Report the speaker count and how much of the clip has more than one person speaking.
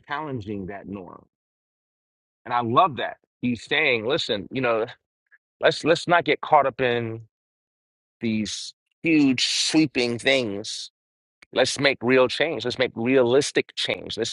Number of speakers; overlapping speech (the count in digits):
1, no overlap